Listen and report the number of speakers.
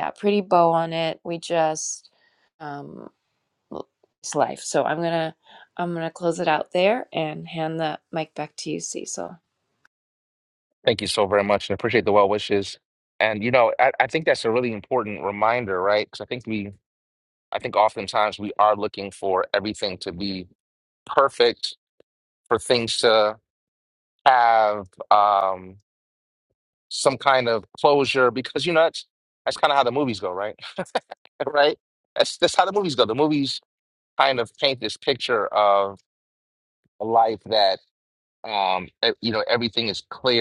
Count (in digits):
2